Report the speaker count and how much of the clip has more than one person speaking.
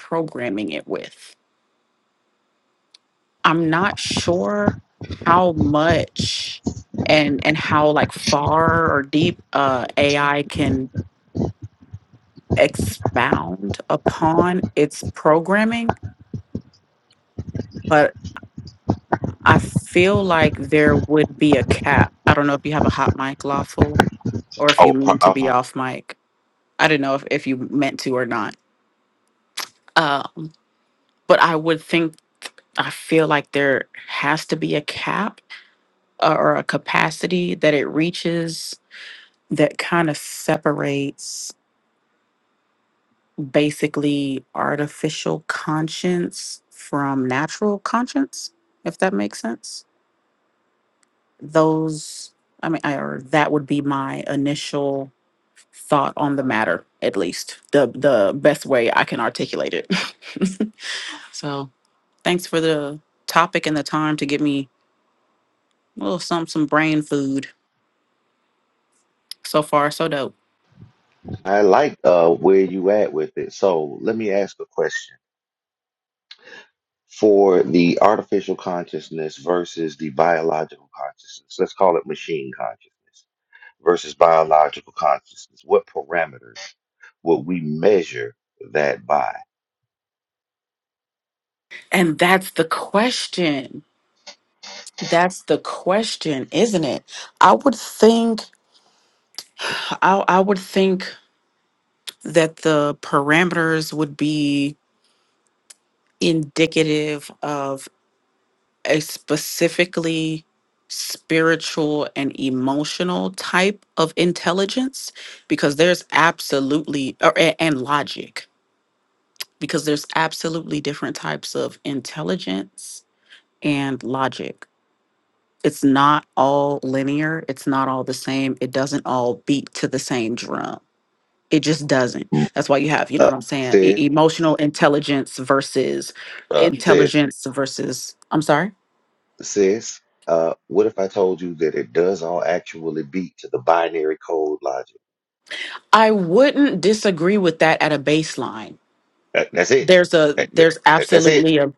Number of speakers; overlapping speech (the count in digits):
2, about 2%